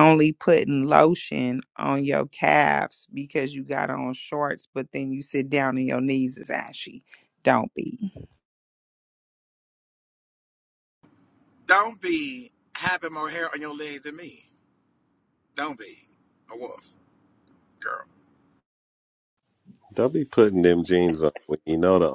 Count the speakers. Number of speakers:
3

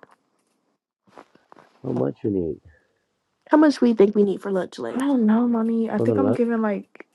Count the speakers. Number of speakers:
3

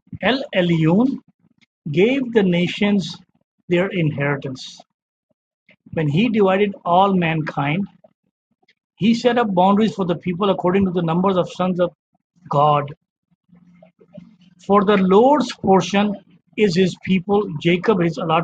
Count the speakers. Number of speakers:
1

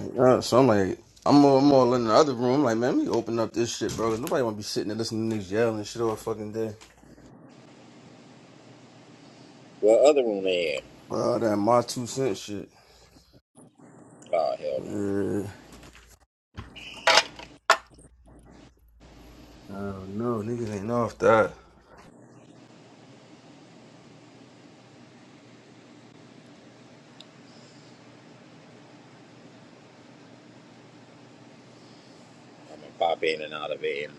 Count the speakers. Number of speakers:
2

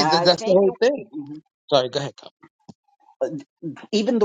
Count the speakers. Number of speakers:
2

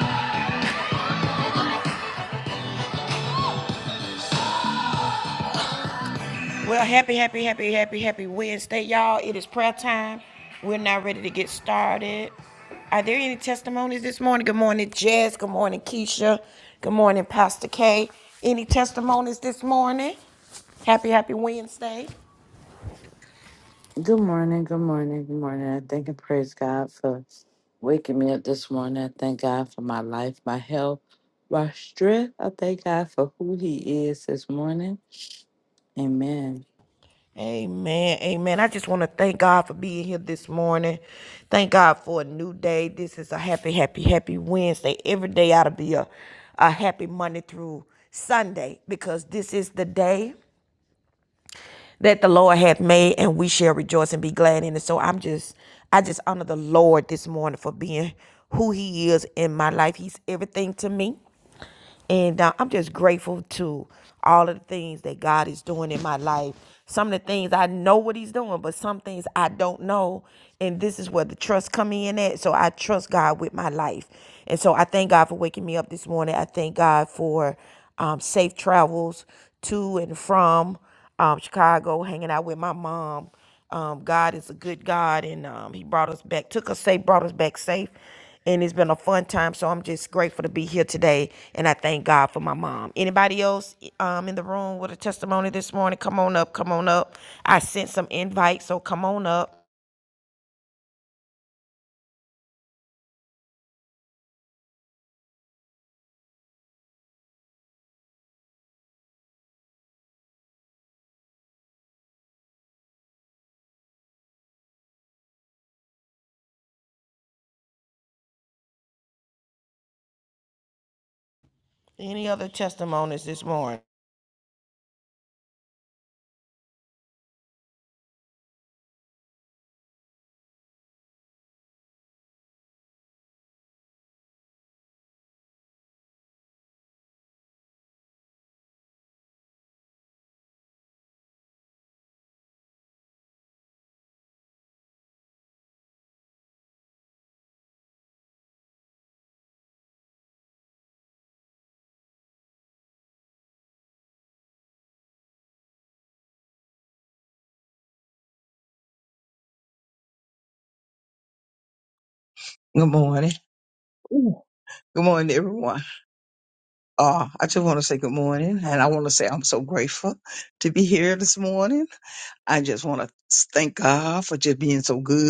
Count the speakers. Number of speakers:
3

